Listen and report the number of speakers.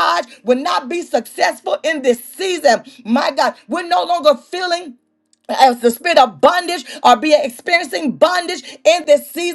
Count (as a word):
one